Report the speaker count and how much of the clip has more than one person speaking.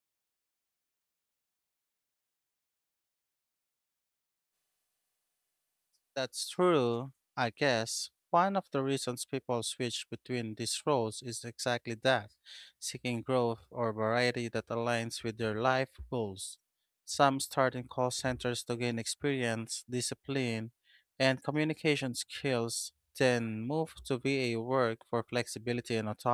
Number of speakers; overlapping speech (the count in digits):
1, no overlap